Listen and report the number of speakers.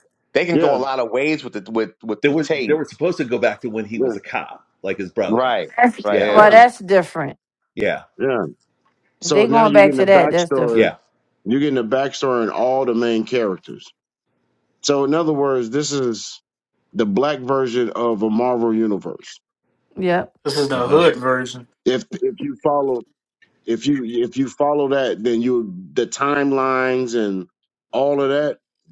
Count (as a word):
five